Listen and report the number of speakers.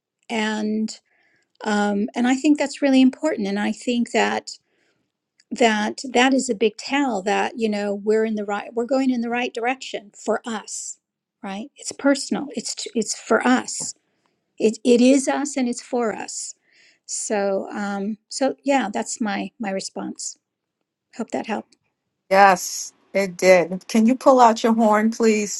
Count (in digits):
2